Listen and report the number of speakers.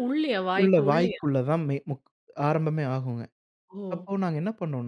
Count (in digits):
2